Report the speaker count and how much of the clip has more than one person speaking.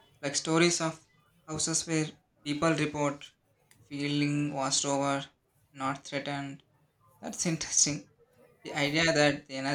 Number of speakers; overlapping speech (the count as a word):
one, no overlap